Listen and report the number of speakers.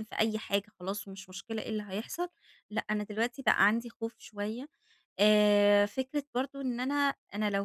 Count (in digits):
1